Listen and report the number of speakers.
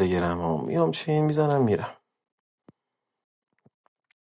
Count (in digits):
1